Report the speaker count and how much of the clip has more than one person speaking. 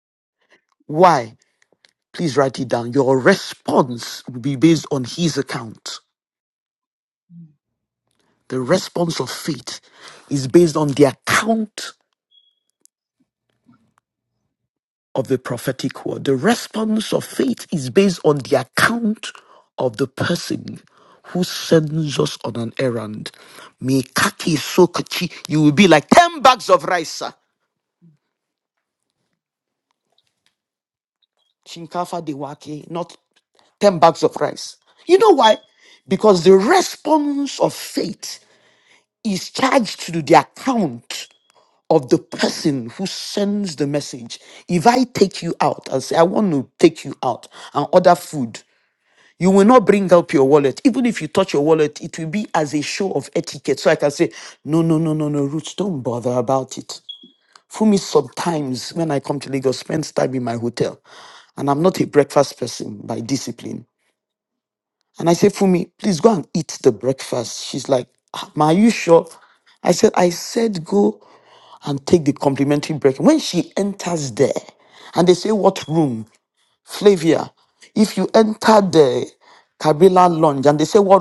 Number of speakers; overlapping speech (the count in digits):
1, no overlap